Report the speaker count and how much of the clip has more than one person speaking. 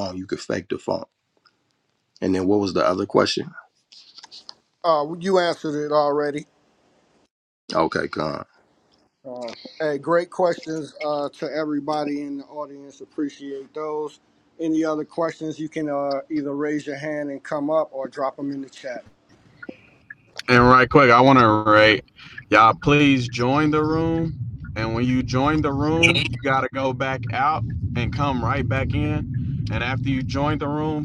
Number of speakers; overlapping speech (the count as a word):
three, no overlap